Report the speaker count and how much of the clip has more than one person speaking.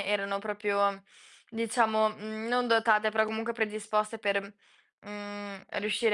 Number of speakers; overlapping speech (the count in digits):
1, no overlap